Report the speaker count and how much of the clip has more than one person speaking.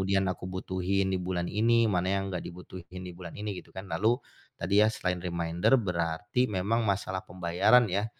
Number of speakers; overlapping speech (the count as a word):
one, no overlap